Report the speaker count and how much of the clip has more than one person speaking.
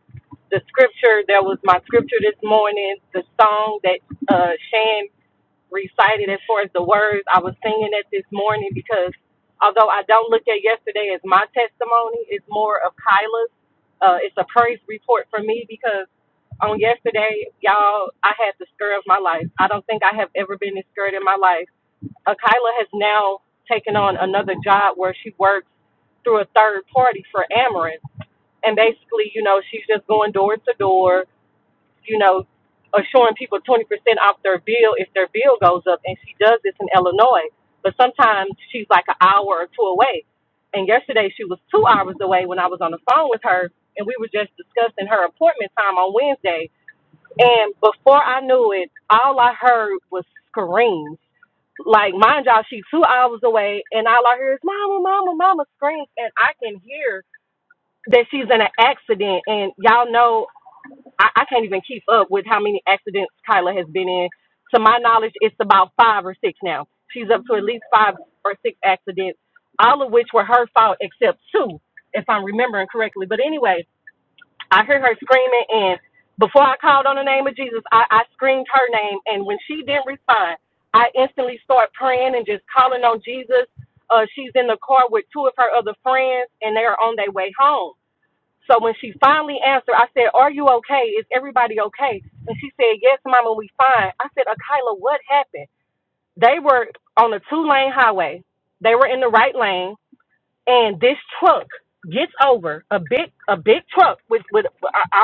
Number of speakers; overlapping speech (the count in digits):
1, no overlap